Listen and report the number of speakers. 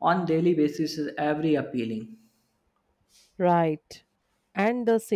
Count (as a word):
two